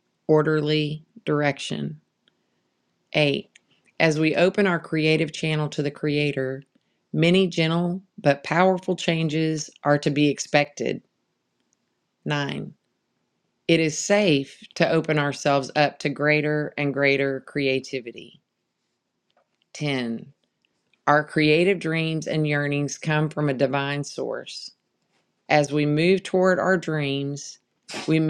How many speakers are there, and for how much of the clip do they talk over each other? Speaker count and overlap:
1, no overlap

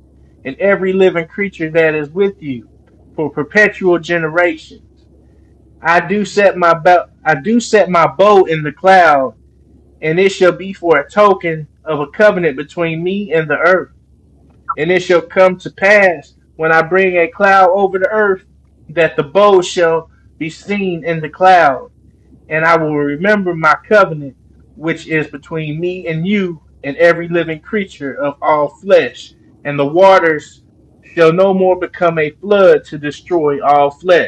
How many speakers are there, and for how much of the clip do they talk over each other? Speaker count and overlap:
1, no overlap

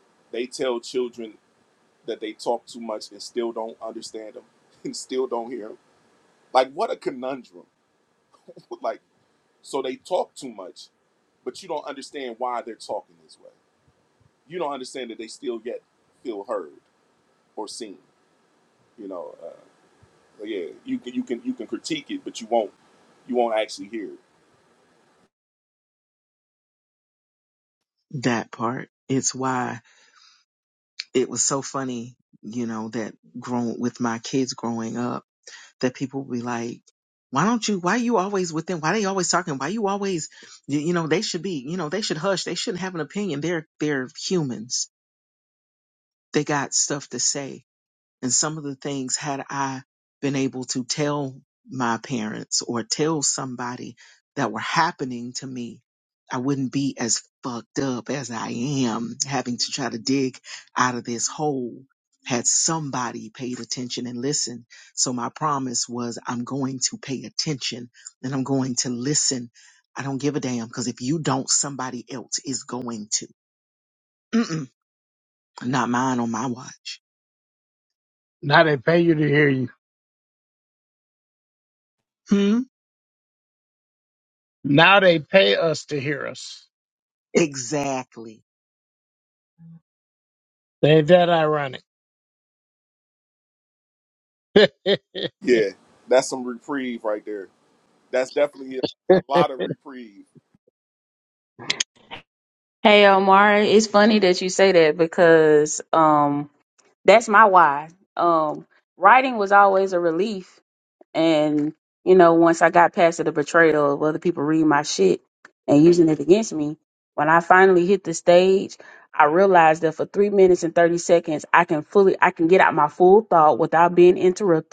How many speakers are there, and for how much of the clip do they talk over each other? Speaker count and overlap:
4, no overlap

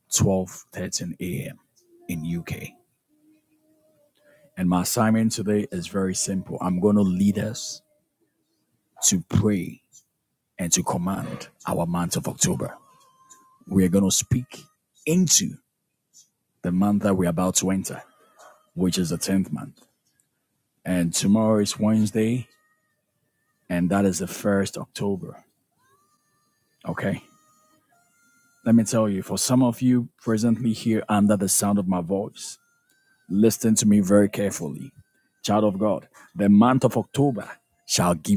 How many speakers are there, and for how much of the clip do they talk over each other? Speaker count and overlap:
1, no overlap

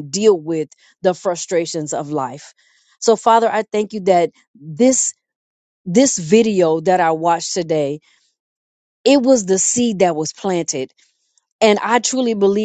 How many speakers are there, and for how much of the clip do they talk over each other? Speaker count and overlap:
1, no overlap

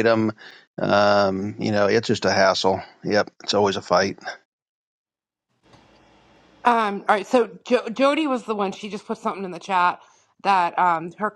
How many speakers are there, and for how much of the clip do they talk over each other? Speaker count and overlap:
2, no overlap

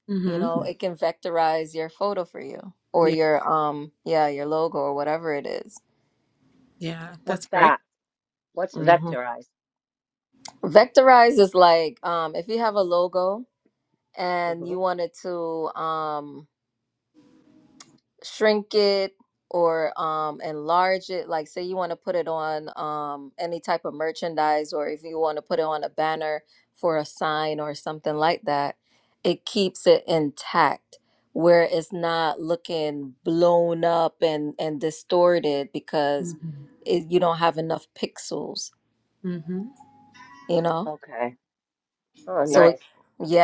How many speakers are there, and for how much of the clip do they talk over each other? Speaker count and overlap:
3, about 5%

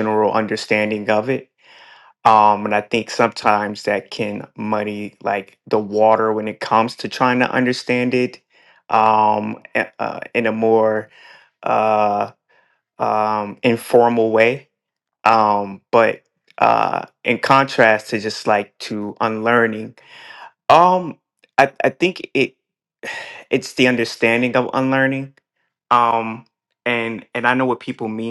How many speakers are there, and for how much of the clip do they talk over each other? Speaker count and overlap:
1, no overlap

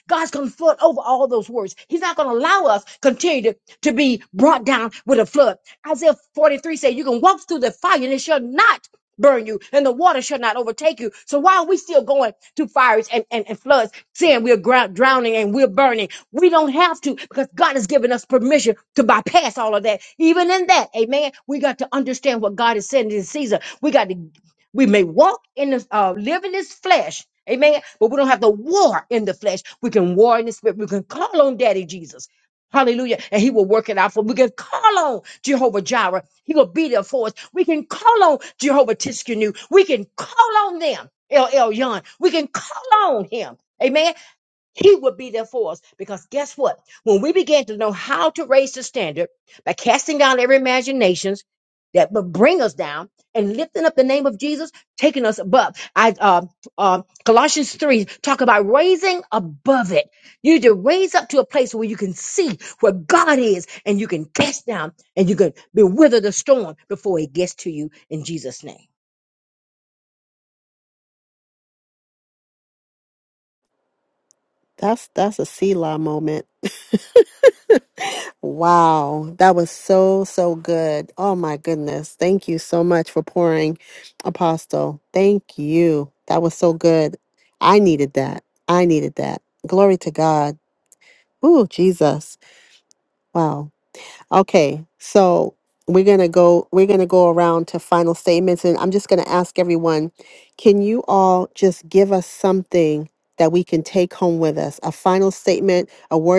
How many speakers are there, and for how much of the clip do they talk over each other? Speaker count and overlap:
2, no overlap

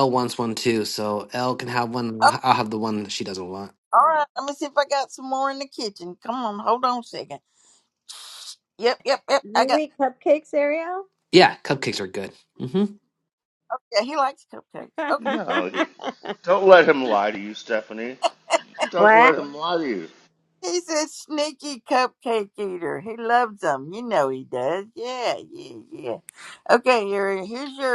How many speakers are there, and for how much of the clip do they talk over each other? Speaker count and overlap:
4, about 3%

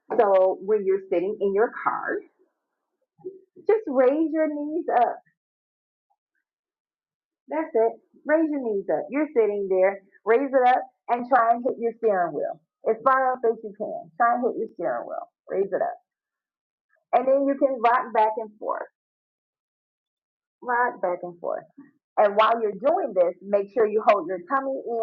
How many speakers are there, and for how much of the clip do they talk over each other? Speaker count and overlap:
1, no overlap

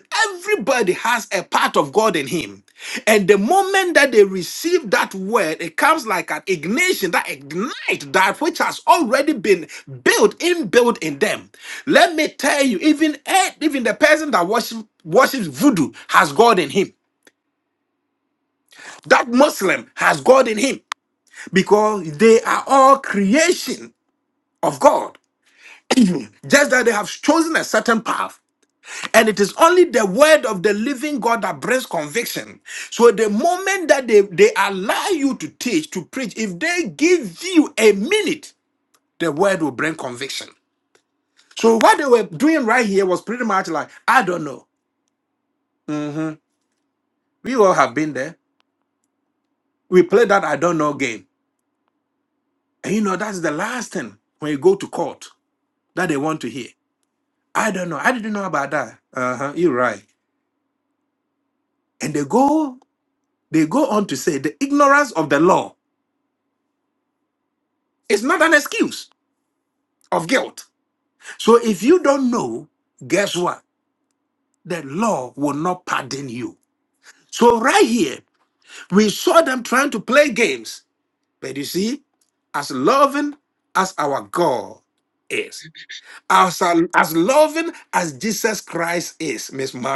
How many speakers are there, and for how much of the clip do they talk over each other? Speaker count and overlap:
1, no overlap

